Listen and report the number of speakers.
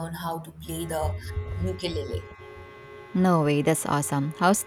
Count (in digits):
2